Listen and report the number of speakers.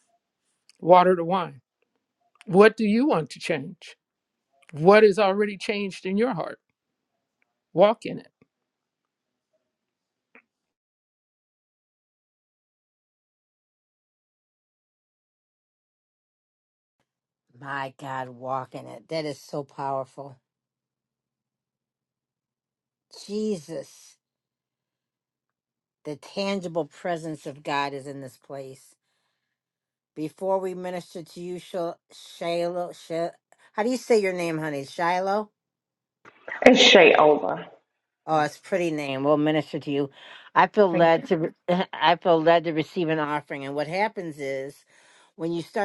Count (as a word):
three